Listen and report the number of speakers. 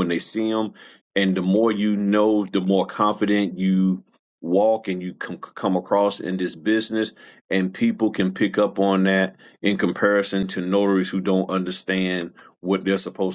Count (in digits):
1